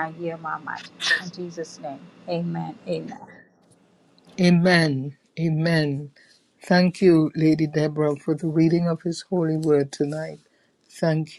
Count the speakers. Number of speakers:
two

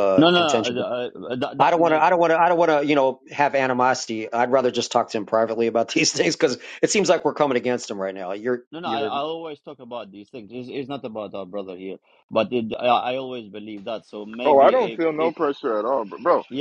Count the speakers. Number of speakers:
three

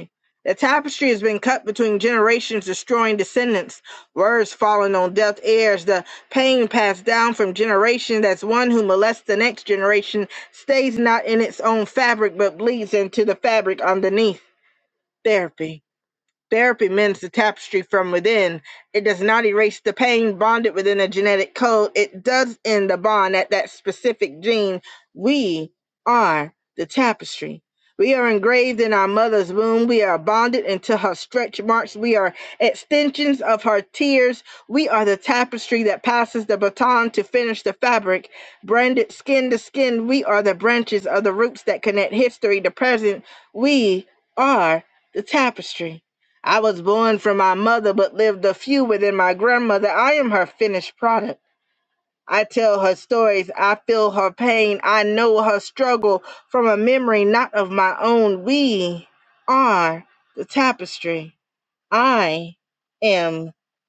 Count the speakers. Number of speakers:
one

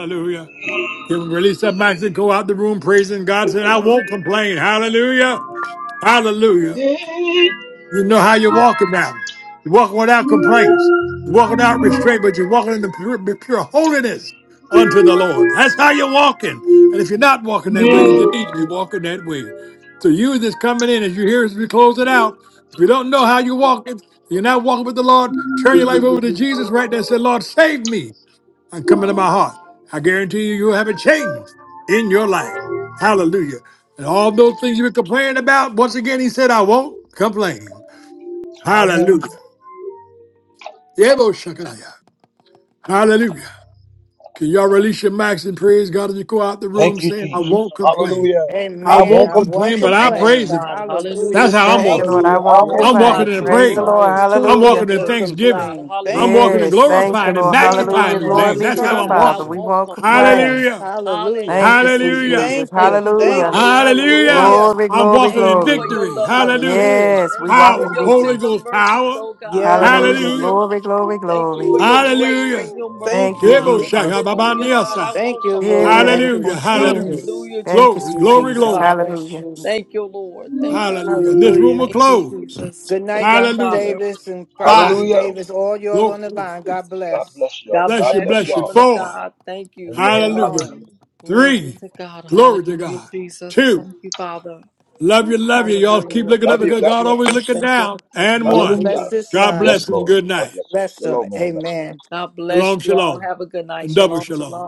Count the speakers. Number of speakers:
five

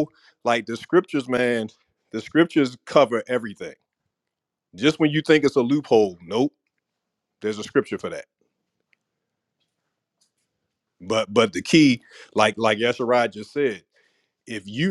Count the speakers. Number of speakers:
one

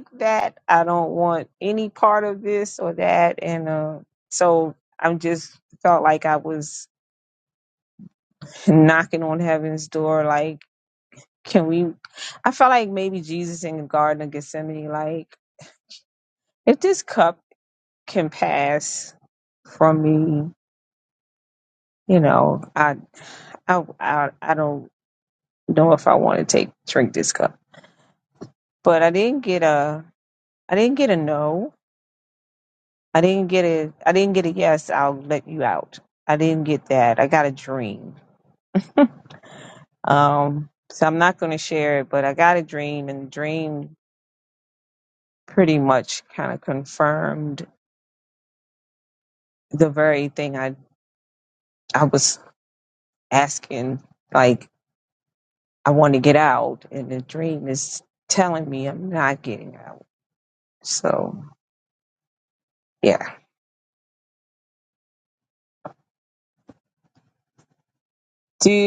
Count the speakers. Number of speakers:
one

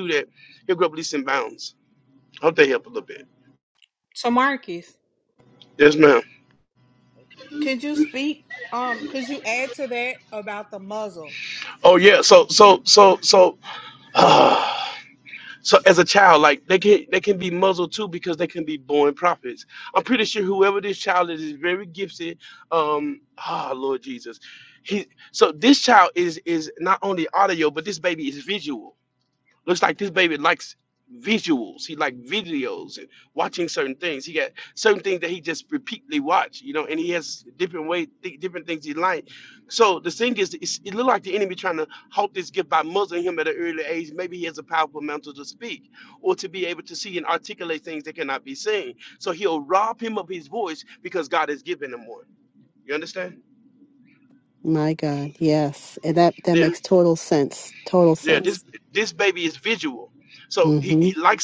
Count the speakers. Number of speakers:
three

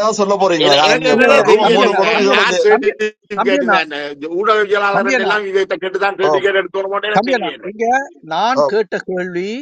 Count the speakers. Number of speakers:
three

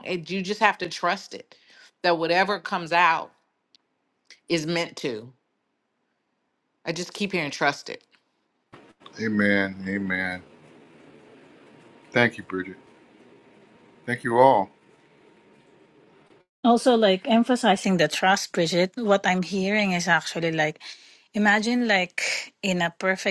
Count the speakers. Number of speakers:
three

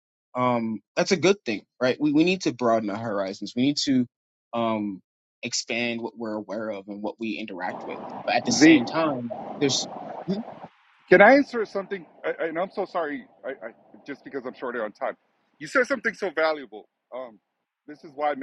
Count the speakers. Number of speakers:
two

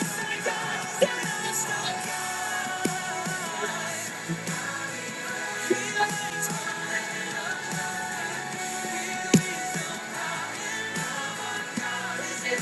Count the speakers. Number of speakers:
zero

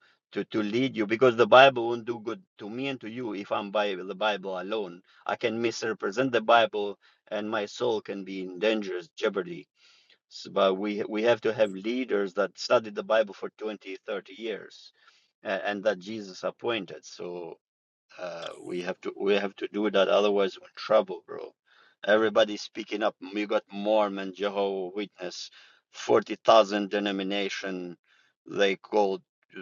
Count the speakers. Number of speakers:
one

